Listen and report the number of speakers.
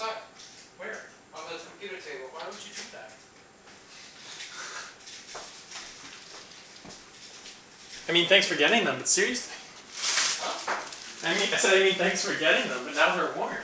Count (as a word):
three